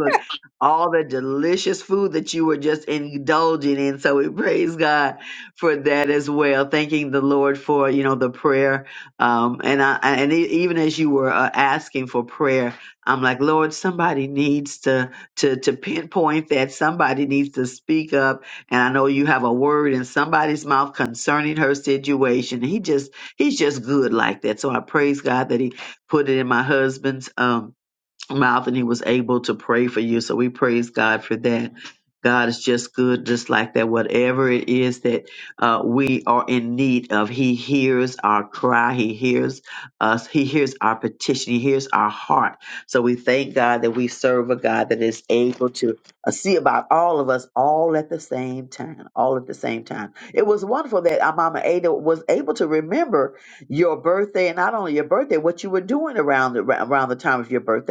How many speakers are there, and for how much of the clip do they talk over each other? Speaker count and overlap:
one, no overlap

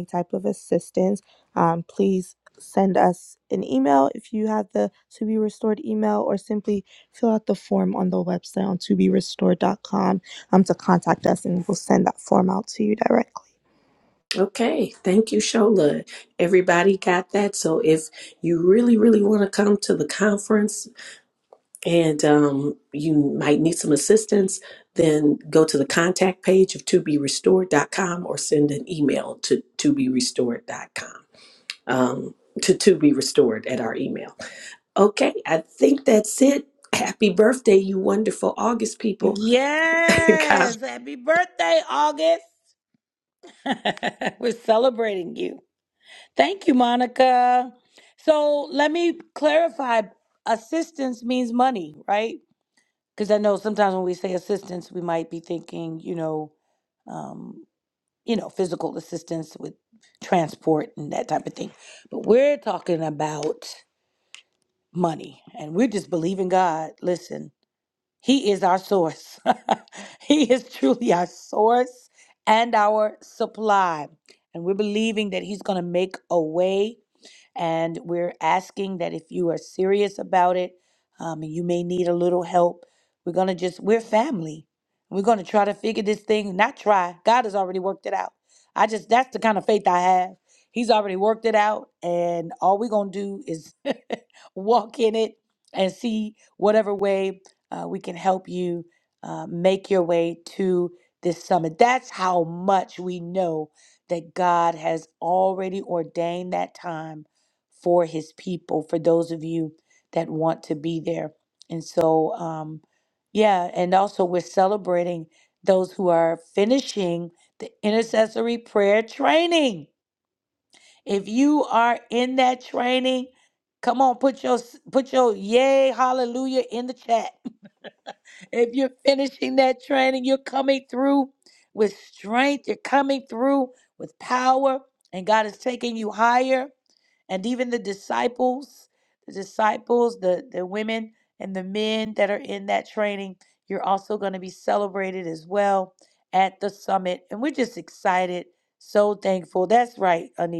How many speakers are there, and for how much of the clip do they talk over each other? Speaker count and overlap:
three, under 1%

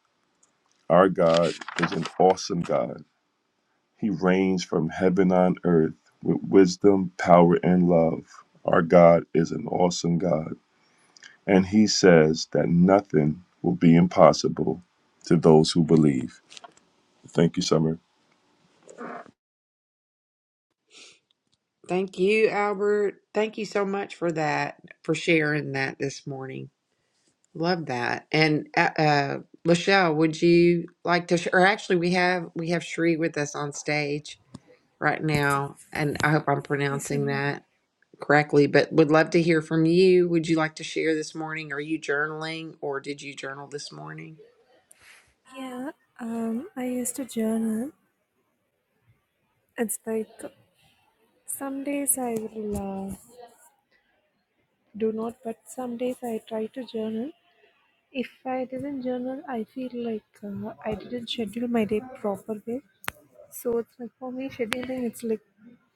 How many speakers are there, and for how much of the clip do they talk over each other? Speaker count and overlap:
three, about 1%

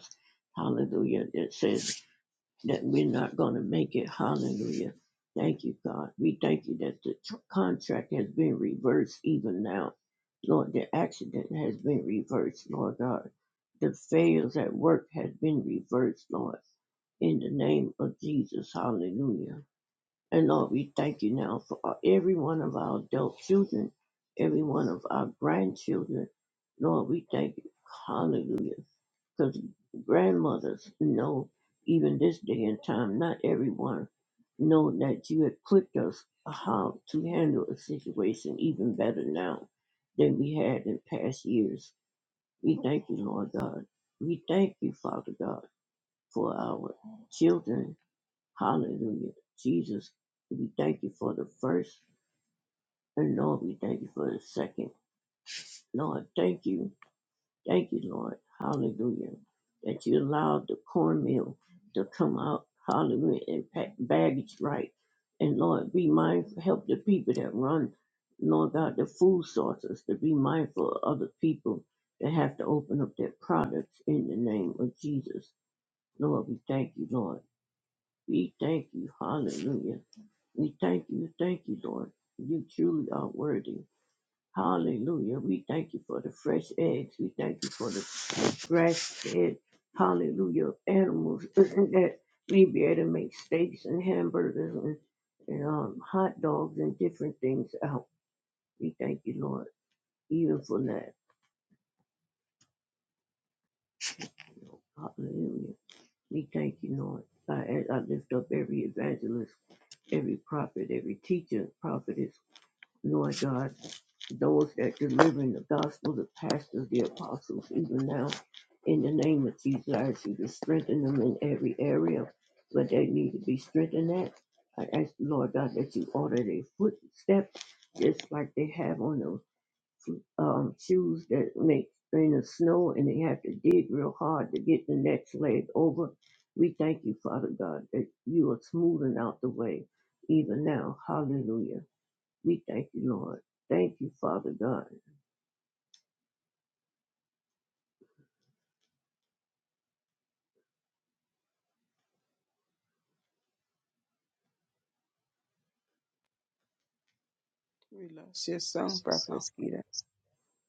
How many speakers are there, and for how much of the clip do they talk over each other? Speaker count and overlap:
two, no overlap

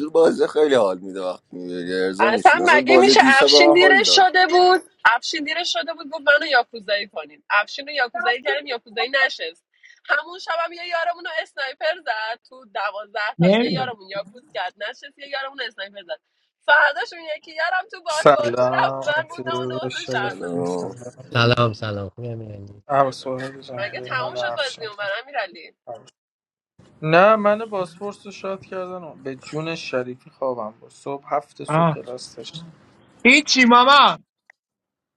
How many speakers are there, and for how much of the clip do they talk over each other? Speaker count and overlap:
five, about 20%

